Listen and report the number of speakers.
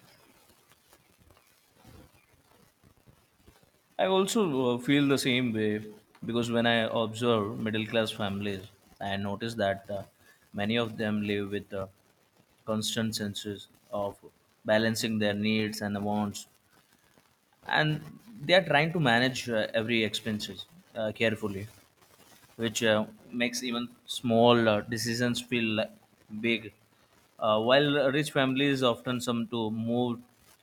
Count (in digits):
1